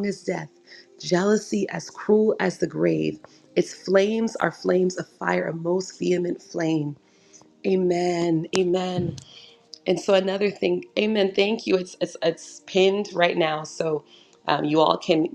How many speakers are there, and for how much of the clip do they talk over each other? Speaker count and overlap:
one, no overlap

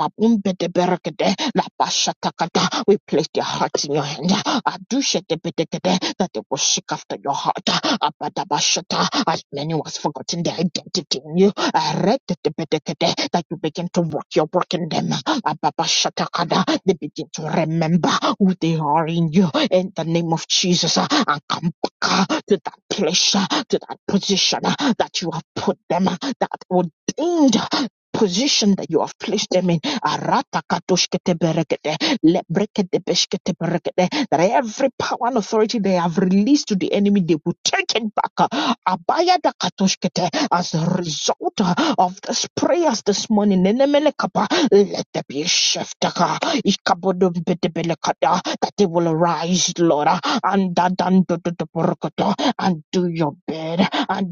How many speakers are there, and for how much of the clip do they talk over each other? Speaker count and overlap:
one, no overlap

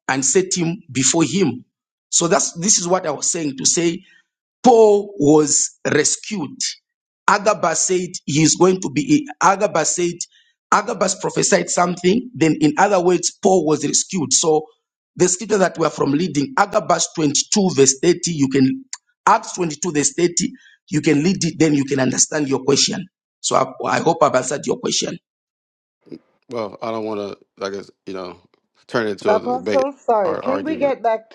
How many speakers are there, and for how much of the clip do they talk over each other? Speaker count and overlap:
three, about 4%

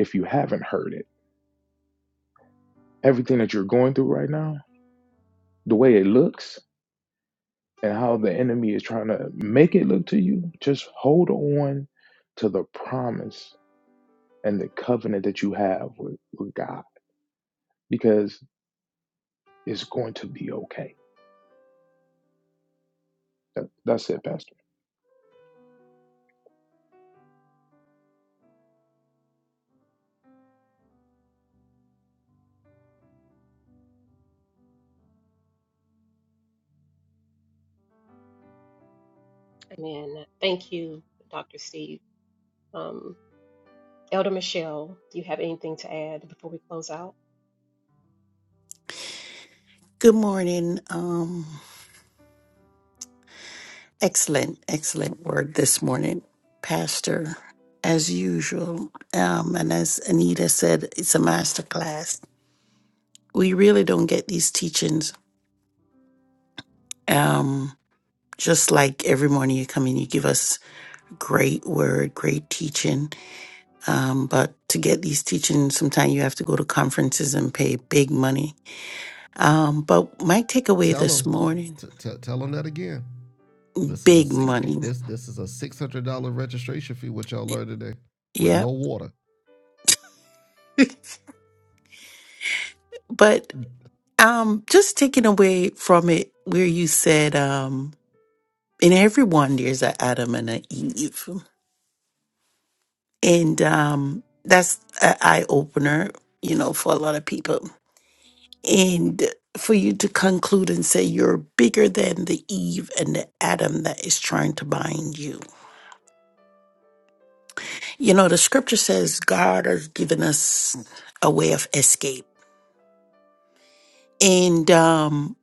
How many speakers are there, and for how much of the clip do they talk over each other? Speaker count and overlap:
four, about 1%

